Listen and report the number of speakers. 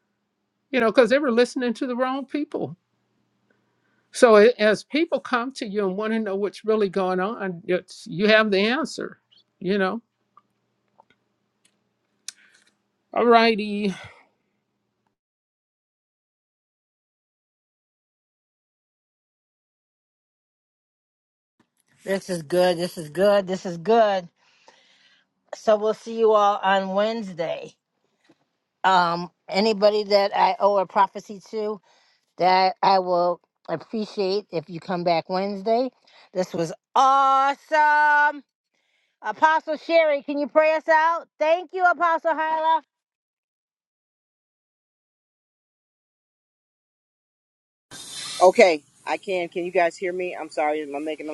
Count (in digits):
3